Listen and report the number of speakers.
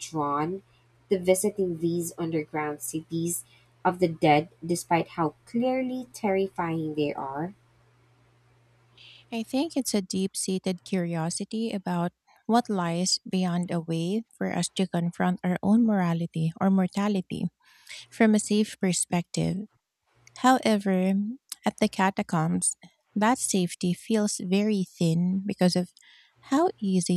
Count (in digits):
2